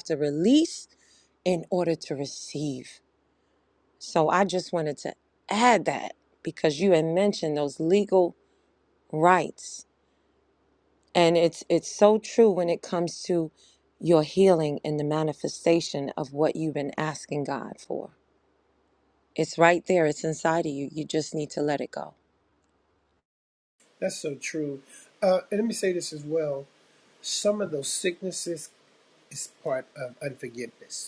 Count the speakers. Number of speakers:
two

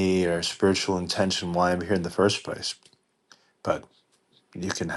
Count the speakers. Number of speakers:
one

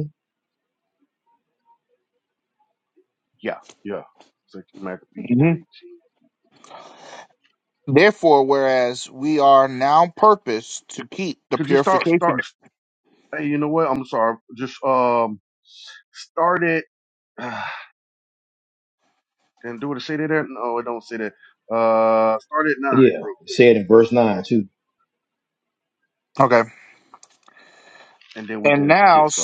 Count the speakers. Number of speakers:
three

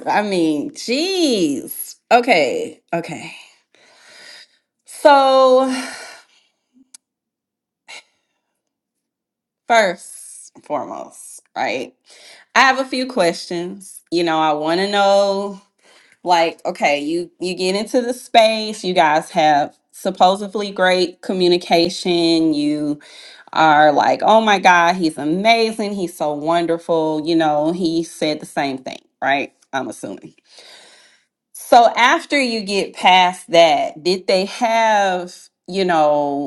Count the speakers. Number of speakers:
one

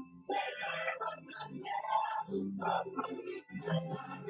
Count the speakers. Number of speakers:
zero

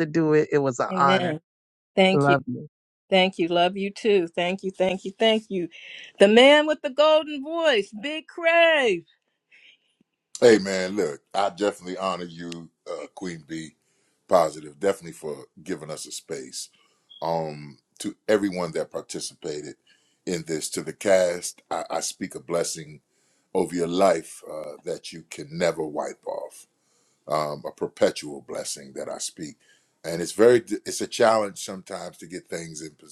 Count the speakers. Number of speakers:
three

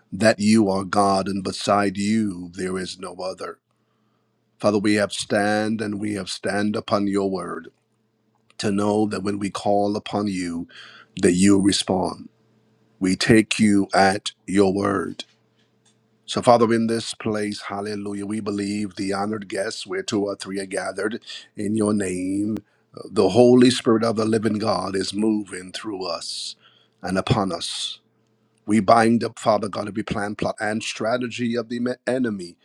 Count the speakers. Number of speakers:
one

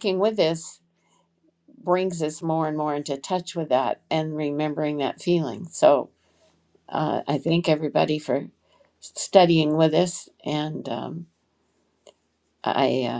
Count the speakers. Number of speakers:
one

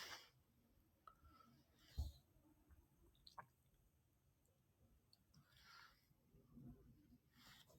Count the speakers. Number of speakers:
zero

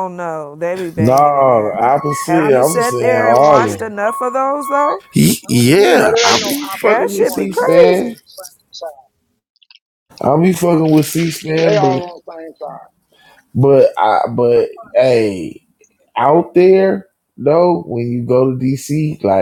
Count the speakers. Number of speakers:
three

